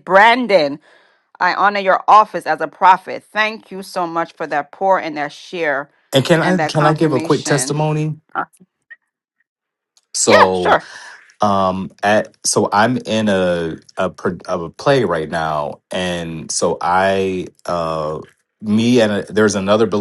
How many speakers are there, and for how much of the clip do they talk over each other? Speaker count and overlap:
2, about 9%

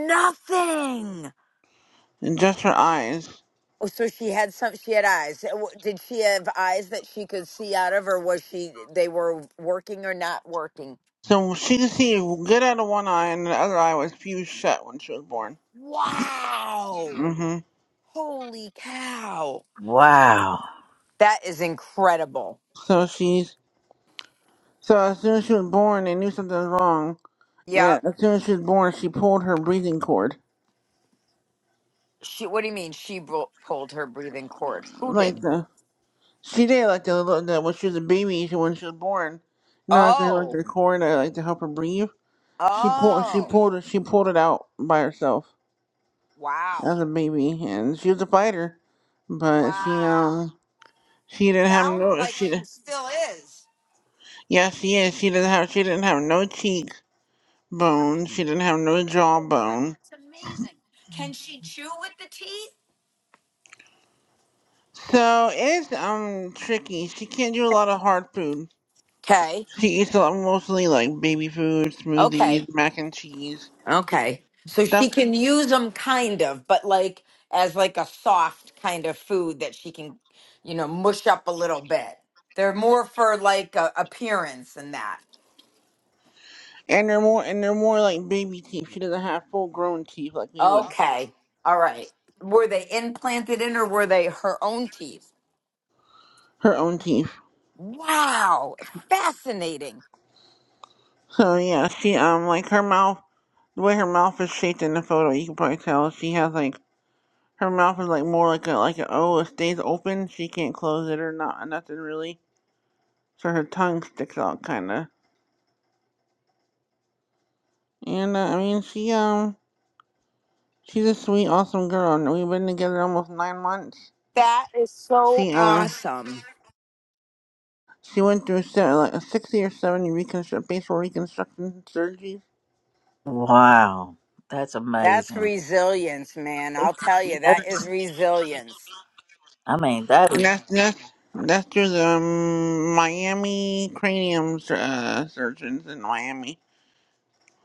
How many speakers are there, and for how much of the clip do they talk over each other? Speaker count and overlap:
3, about 5%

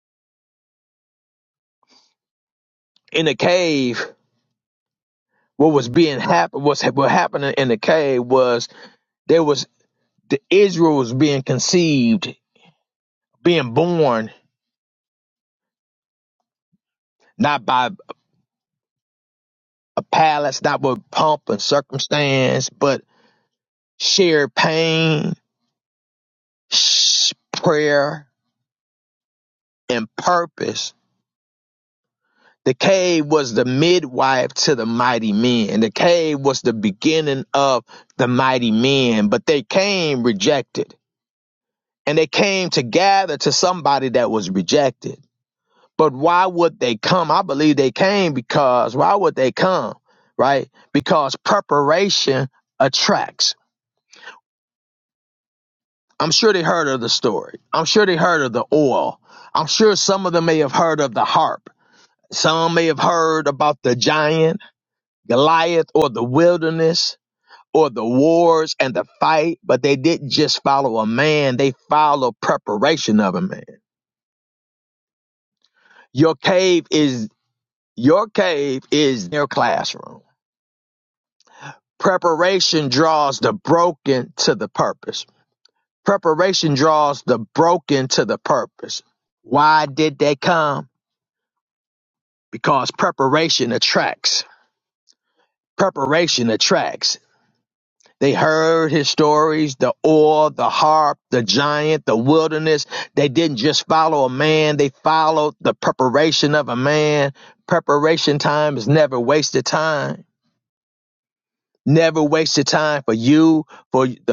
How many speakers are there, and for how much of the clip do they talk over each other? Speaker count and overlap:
1, no overlap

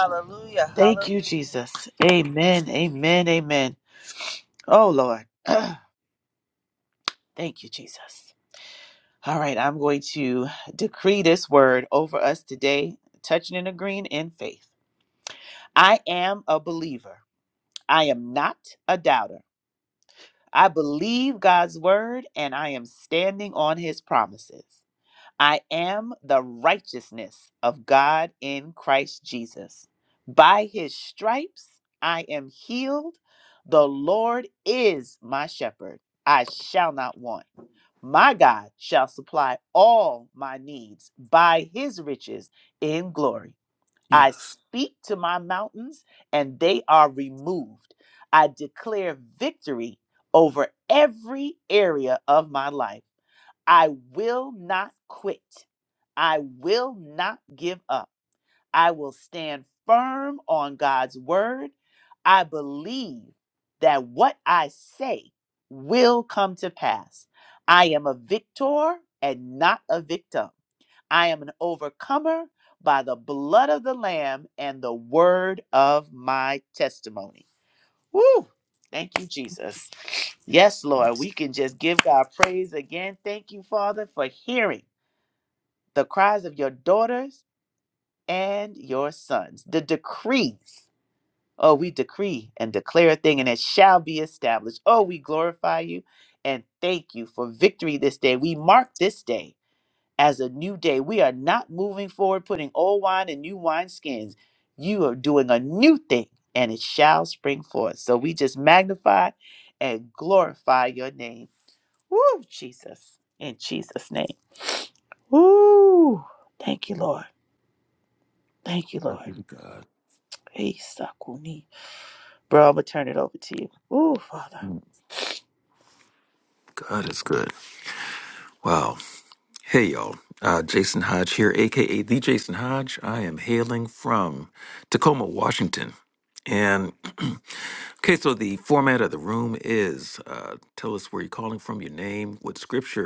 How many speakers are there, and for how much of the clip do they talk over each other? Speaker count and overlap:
3, about 1%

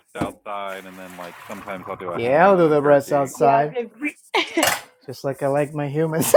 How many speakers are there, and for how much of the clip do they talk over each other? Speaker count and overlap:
3, about 24%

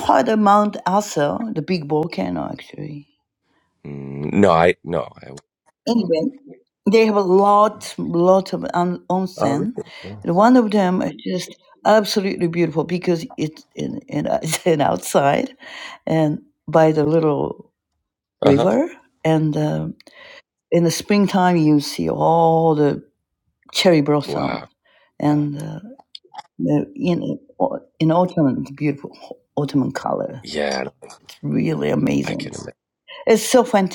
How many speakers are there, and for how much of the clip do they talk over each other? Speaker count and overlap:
2, about 4%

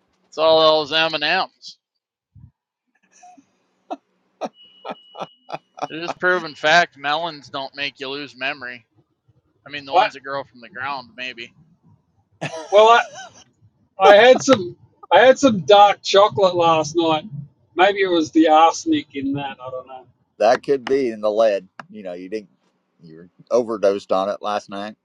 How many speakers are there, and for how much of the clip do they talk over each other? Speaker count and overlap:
3, about 1%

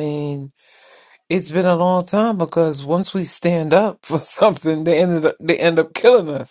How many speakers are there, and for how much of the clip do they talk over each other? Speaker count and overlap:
1, no overlap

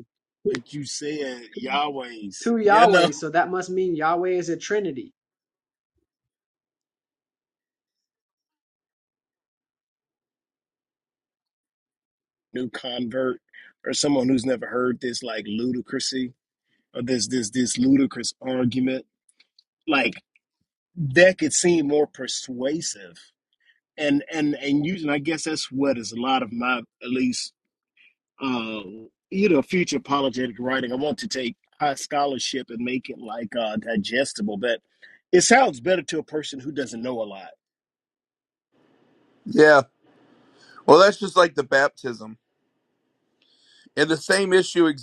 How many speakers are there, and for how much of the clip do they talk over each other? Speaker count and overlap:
3, about 1%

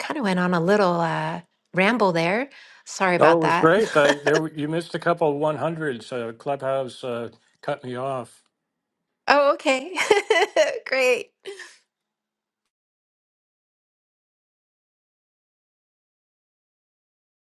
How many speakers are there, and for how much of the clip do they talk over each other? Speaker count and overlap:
2, about 6%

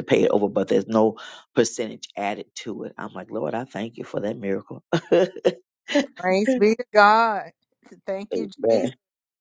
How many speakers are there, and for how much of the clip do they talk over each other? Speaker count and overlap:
2, about 3%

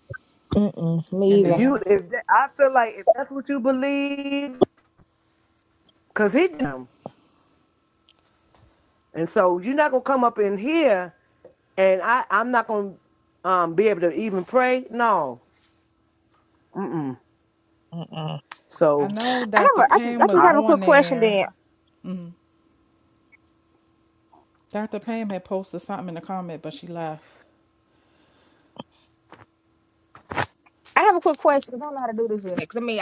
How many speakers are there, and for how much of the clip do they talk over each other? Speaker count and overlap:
3, about 7%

